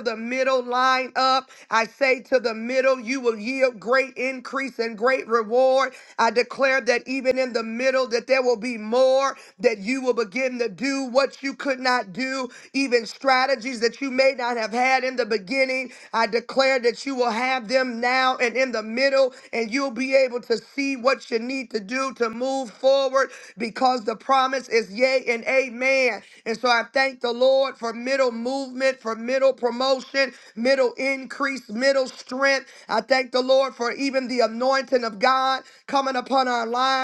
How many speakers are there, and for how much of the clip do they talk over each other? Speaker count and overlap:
1, no overlap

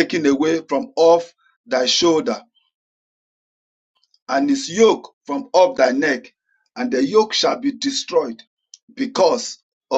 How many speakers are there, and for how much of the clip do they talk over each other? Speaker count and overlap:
1, no overlap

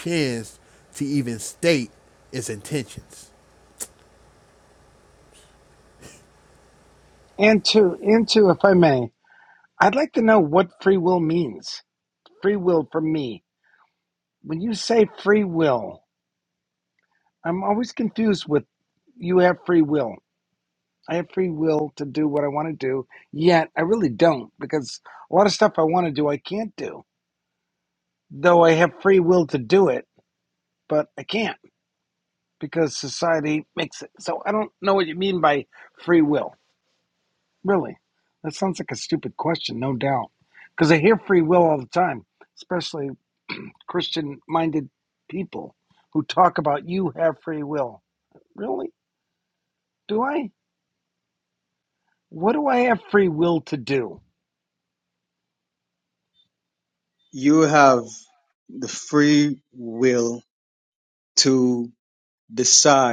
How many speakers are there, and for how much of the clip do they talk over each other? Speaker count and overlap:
3, no overlap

